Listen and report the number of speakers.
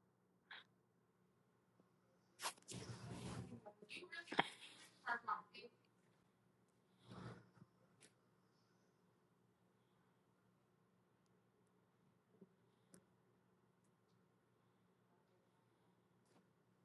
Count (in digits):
0